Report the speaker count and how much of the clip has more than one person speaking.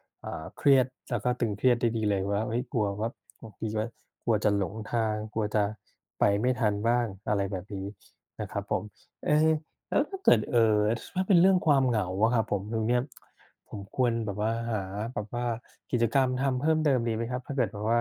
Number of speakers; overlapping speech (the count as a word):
one, no overlap